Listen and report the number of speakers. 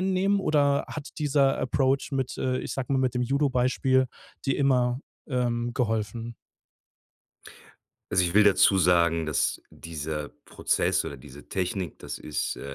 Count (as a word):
two